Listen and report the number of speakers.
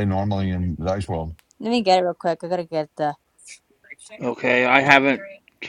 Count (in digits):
3